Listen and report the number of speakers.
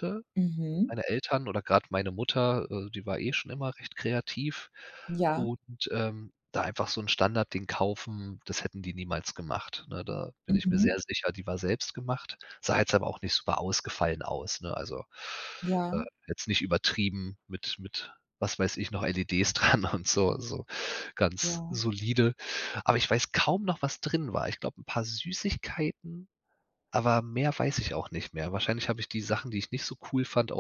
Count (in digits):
2